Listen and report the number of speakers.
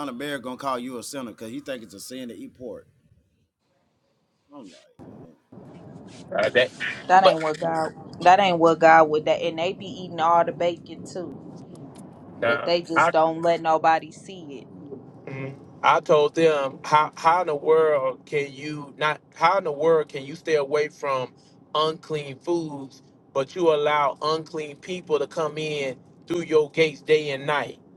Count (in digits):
3